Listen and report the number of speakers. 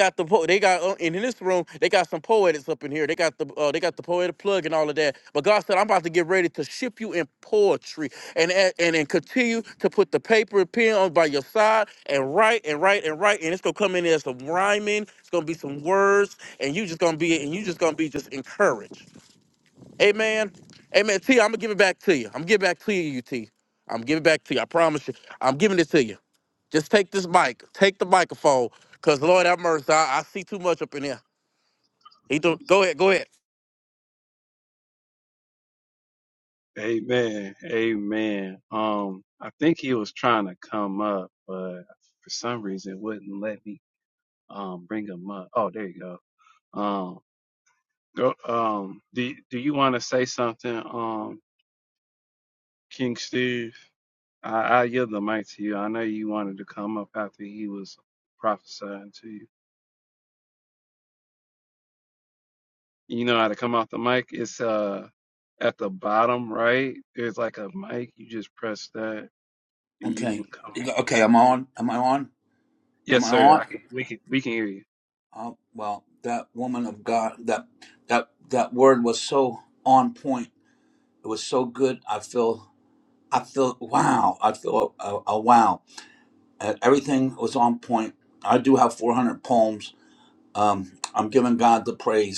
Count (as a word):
three